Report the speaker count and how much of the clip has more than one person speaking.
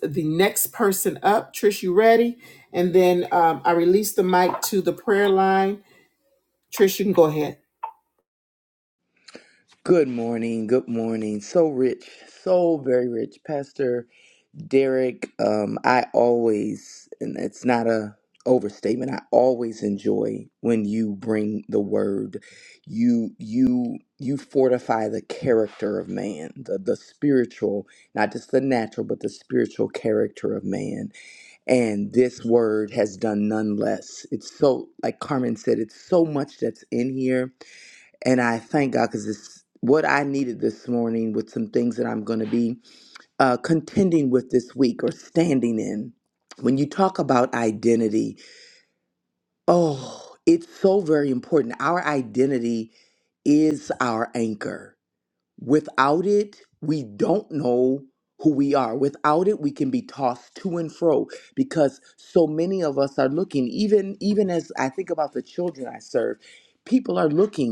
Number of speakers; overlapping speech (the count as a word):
two, no overlap